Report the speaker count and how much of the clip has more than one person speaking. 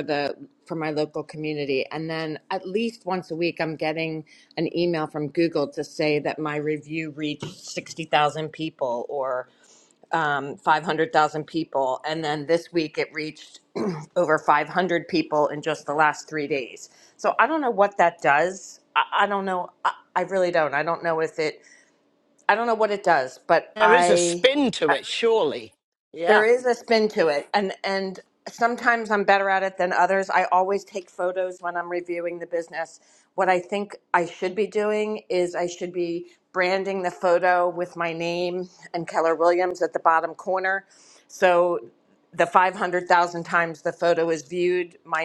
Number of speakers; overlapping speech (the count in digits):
2, about 2%